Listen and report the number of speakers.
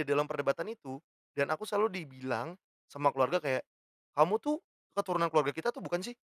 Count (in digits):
1